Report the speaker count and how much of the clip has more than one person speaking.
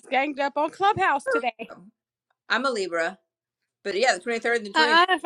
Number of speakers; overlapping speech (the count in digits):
2, about 5%